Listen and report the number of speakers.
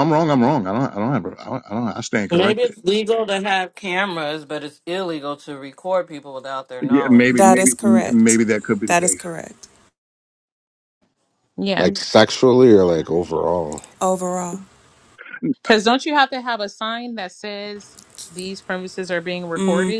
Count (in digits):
5